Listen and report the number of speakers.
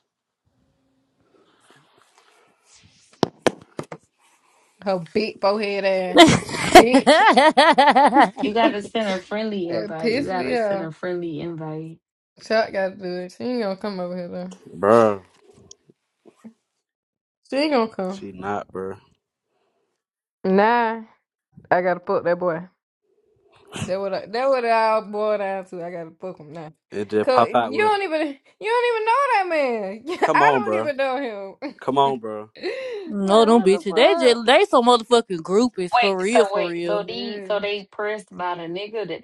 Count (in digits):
4